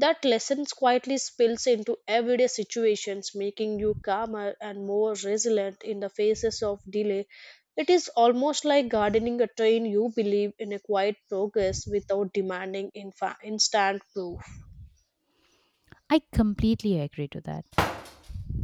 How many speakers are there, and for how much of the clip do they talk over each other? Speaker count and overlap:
2, no overlap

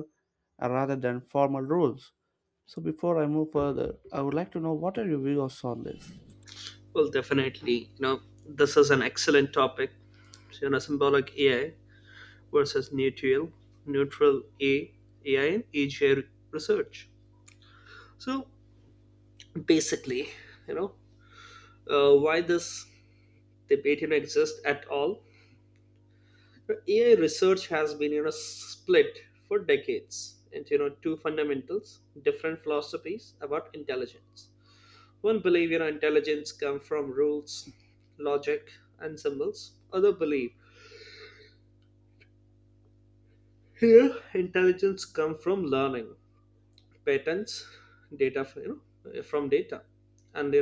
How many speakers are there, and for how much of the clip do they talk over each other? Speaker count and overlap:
2, no overlap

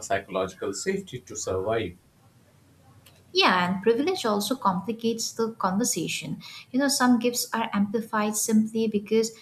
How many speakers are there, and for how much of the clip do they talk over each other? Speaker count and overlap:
2, no overlap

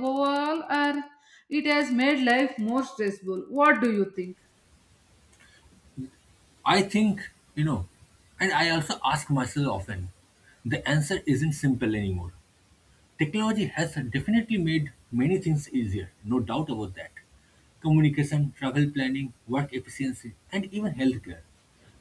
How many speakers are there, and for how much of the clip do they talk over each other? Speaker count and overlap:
2, no overlap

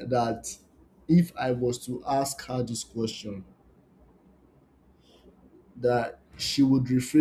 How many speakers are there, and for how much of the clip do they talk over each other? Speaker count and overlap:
1, no overlap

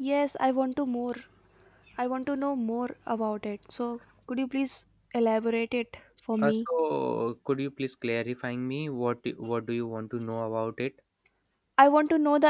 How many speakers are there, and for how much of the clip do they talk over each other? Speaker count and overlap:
2, about 2%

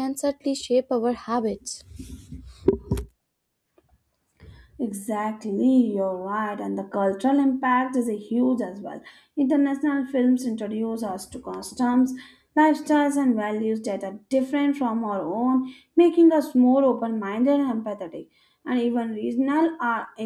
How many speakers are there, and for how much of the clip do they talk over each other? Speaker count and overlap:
2, no overlap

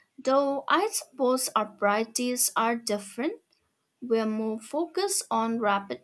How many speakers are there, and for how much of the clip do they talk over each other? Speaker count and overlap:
1, no overlap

